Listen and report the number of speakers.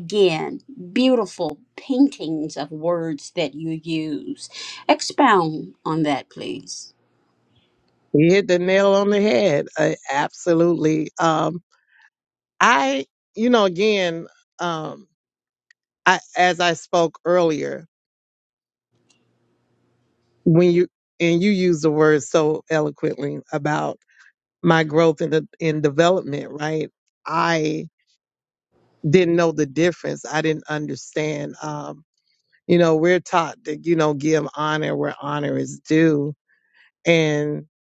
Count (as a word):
two